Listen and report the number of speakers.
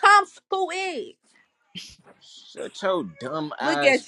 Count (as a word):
two